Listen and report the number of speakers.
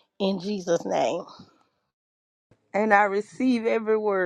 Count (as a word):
two